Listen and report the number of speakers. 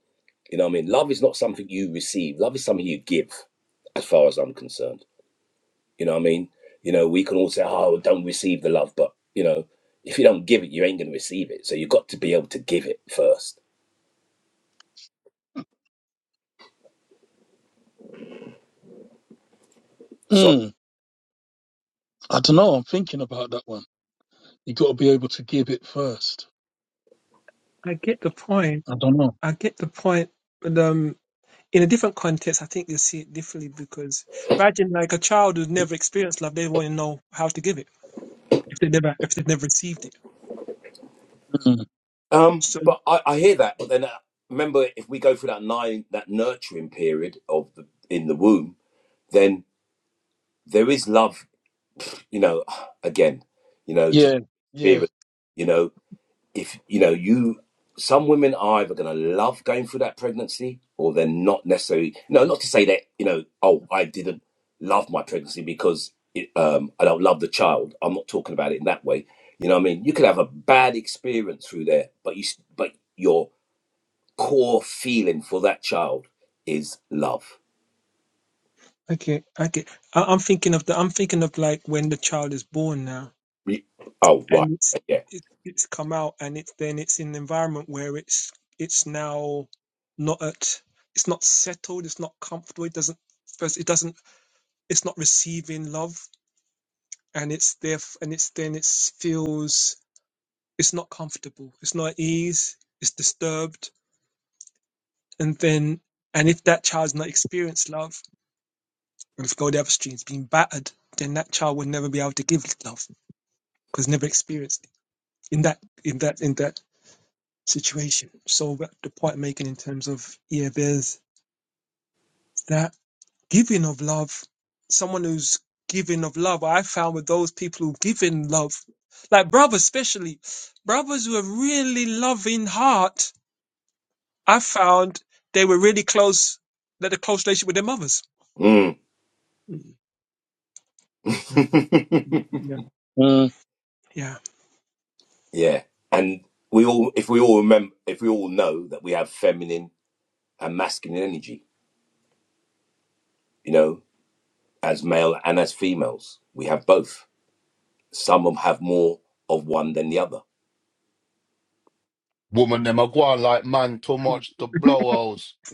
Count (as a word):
four